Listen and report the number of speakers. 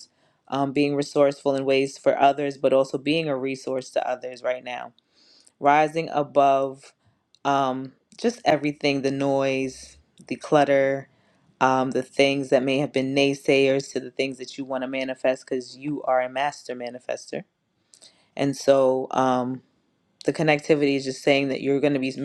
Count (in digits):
1